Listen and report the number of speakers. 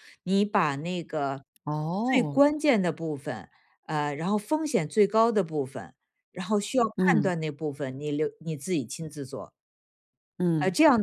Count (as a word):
two